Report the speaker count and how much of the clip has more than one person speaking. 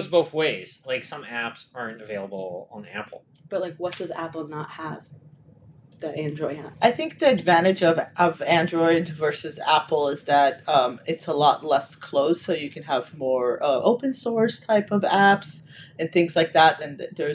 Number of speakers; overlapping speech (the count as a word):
three, no overlap